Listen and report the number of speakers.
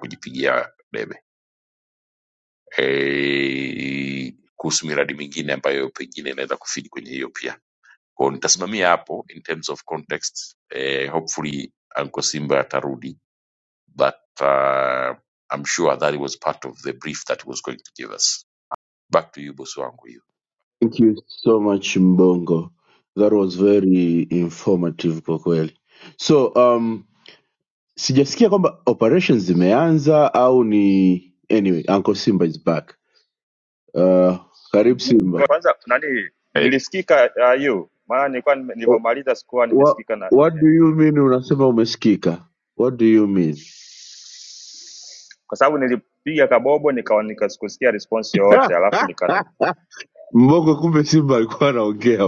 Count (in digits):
3